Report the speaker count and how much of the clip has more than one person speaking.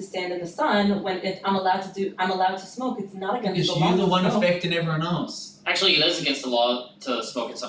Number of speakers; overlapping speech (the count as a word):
three, about 14%